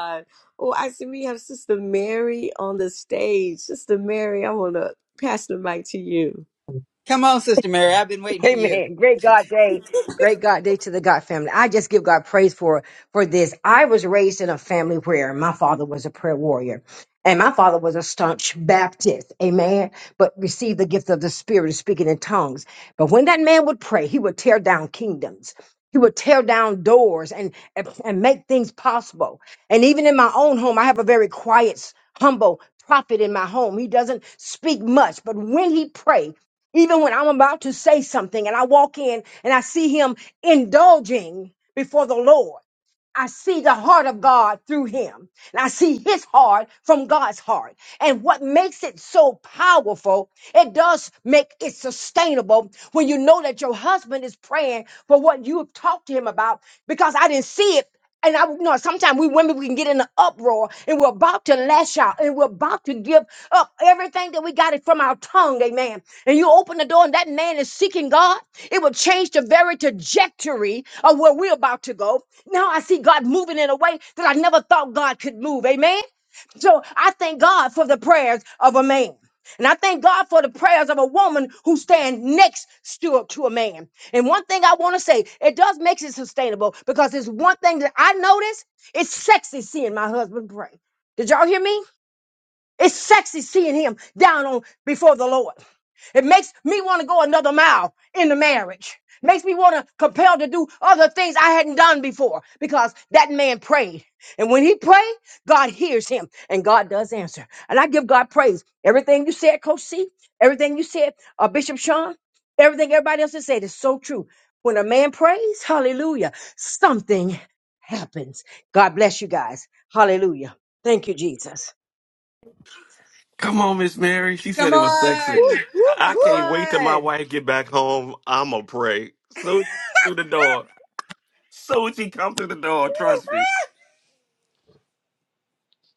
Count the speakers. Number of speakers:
four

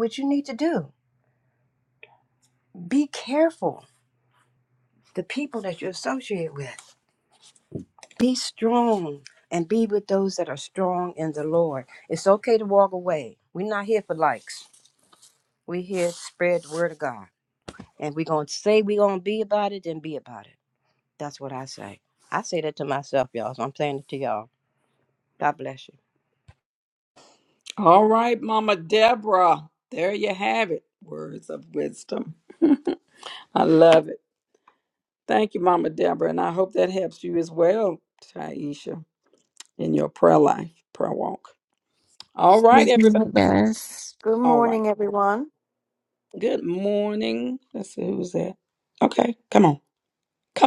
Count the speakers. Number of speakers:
four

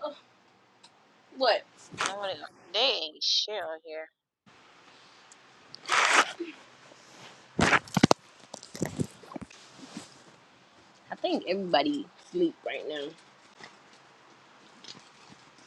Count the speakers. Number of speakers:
two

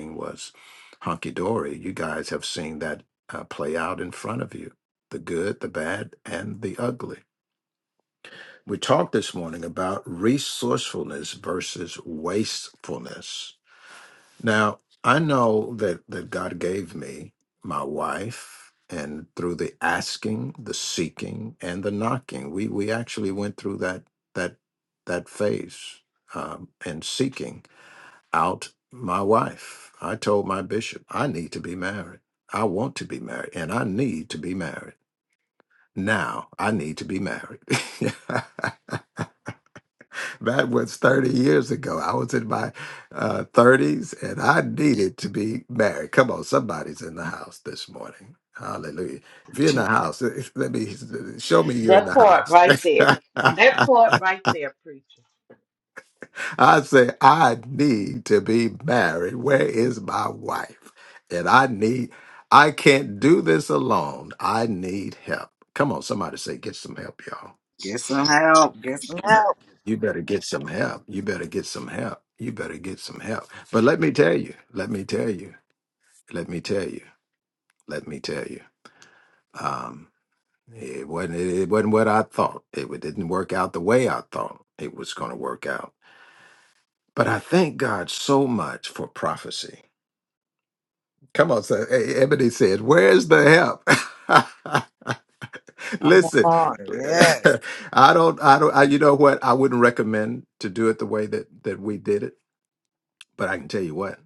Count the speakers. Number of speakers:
three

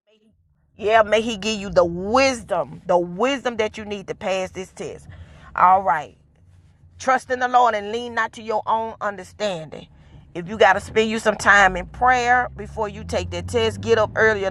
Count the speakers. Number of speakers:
one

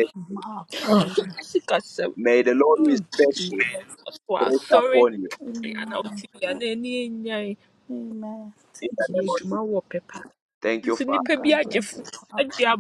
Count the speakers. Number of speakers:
three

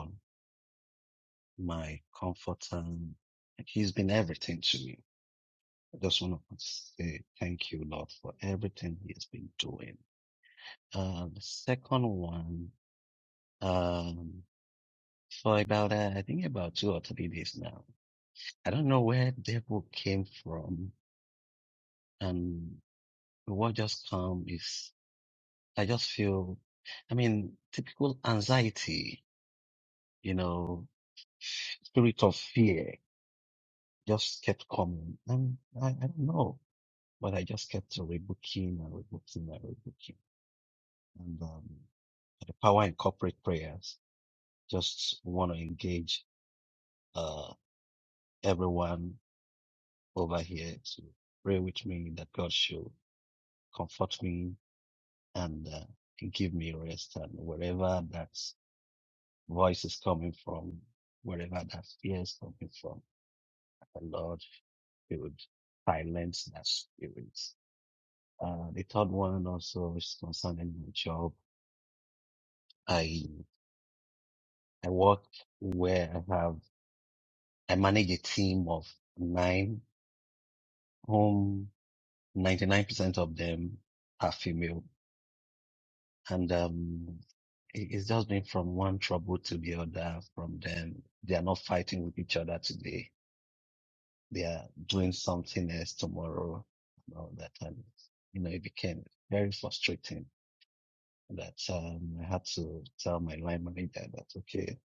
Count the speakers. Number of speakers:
one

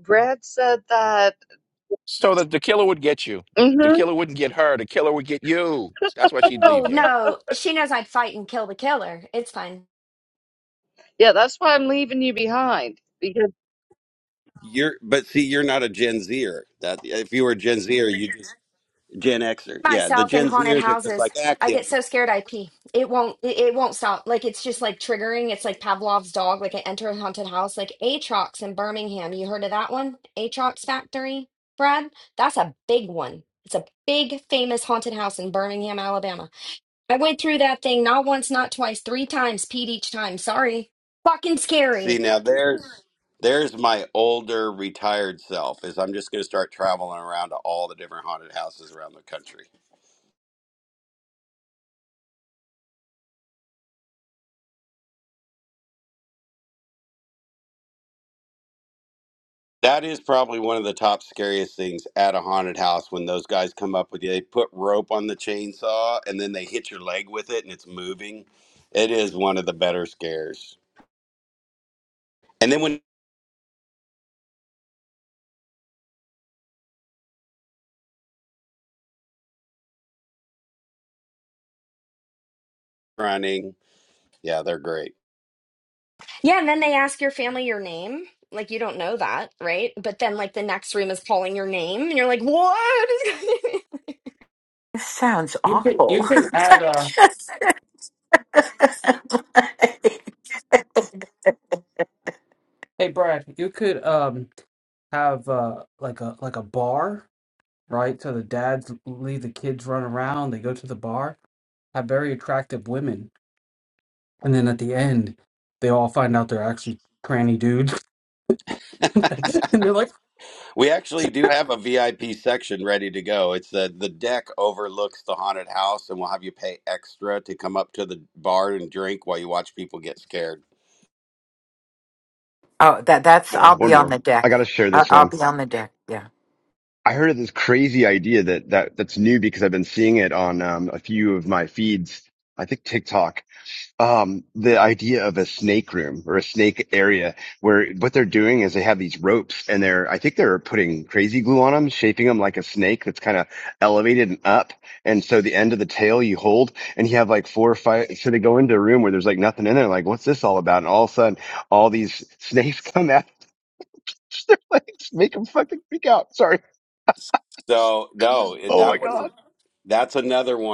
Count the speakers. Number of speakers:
seven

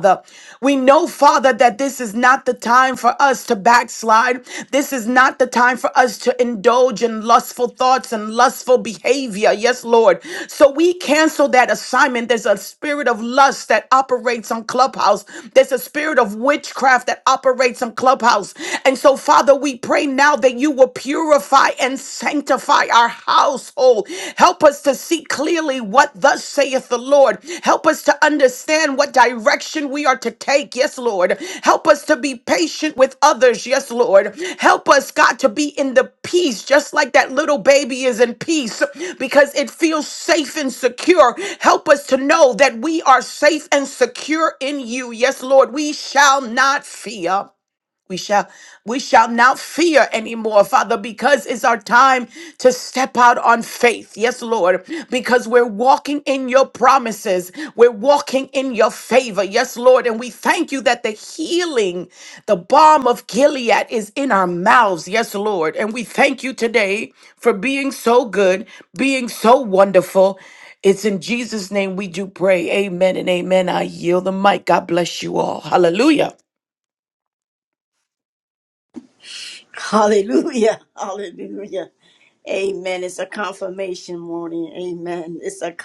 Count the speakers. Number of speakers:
two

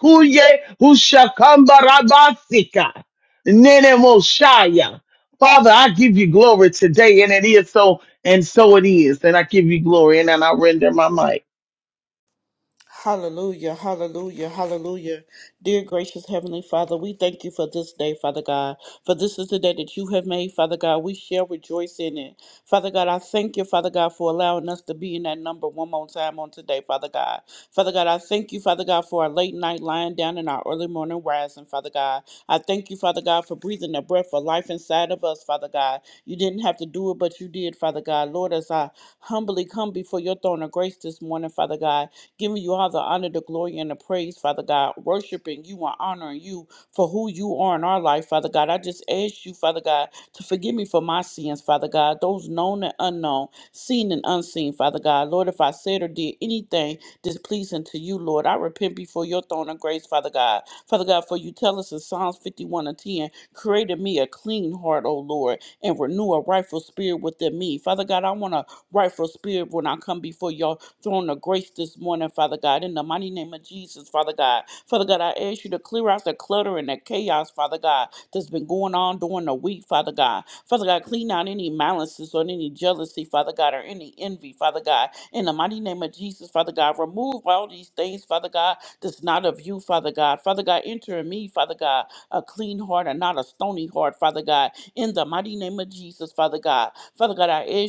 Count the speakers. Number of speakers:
two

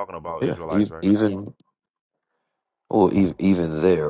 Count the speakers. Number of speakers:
two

